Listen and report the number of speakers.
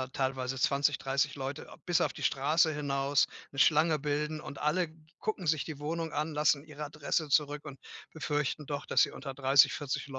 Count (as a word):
one